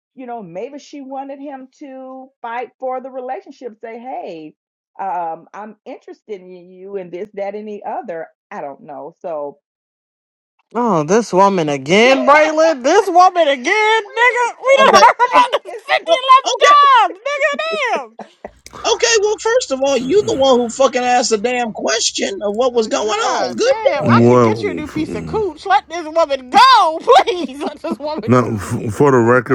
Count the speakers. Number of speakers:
four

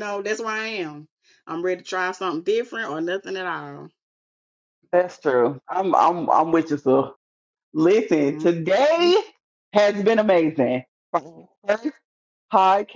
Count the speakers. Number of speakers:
two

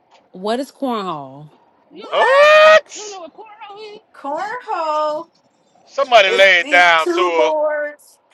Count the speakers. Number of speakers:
four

